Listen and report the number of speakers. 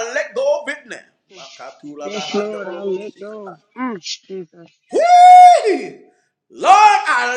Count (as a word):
two